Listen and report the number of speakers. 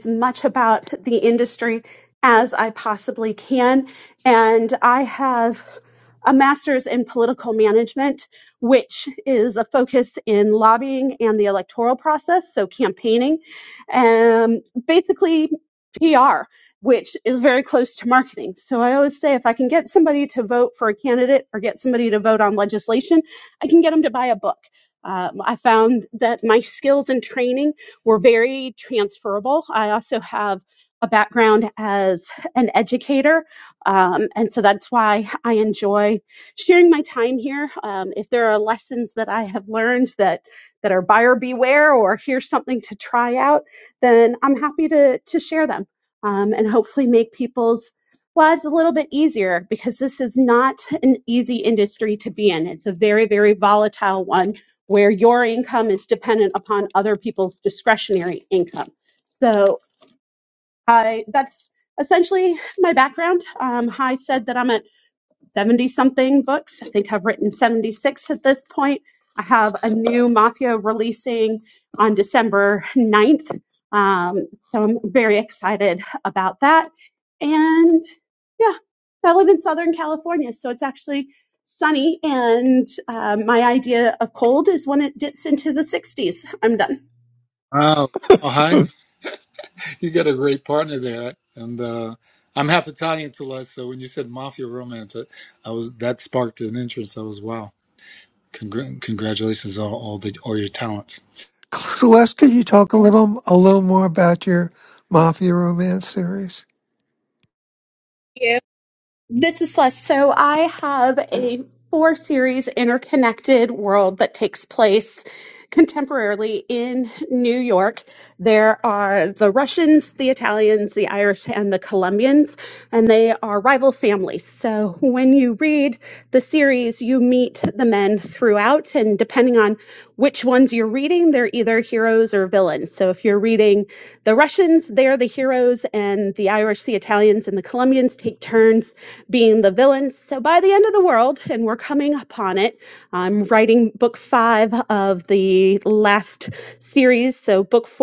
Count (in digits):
3